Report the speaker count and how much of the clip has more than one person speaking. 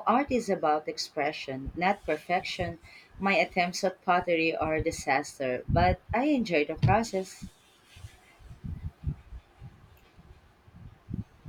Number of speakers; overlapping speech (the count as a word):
one, no overlap